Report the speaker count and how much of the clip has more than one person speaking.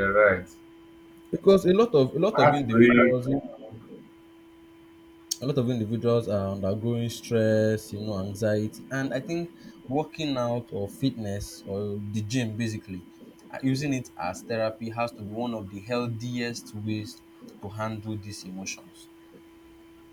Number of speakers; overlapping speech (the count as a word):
two, about 4%